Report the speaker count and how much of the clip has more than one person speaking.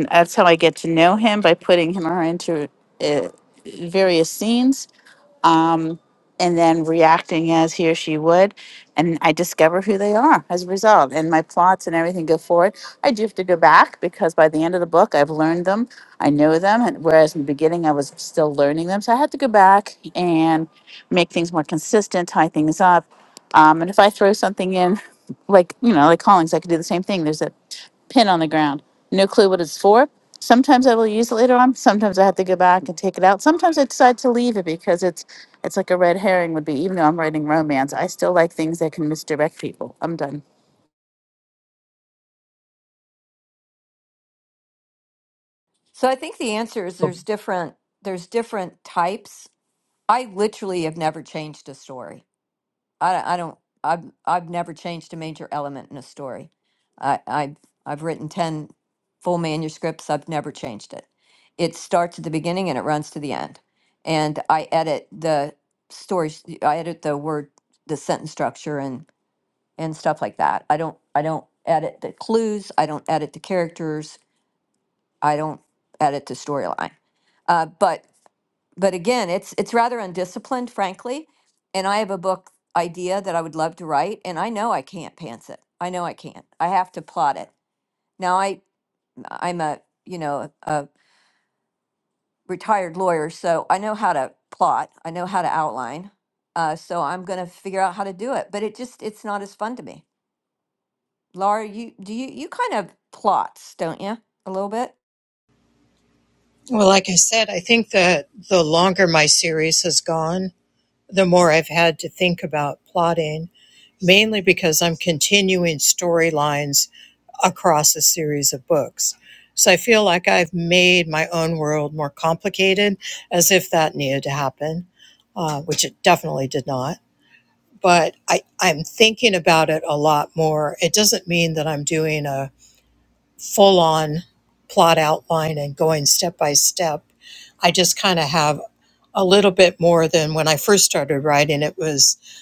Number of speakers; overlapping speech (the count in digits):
3, no overlap